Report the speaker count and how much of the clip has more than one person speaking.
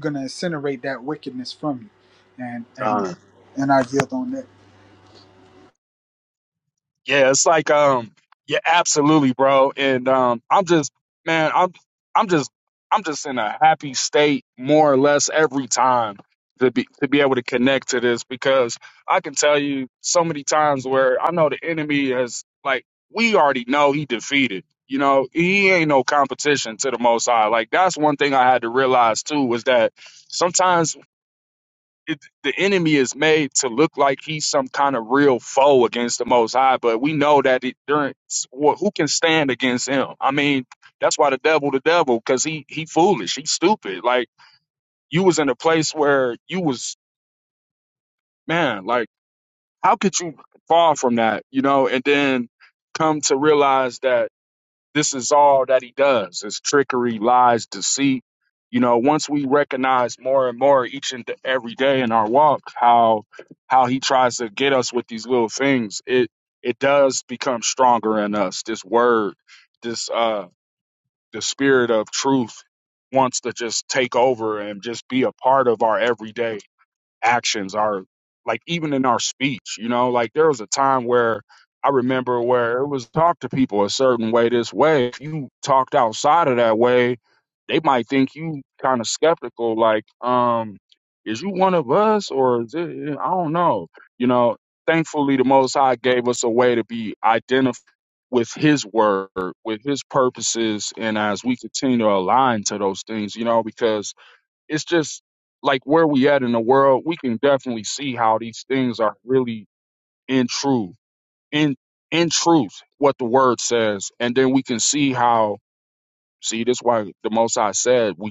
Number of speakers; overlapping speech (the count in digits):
2, under 1%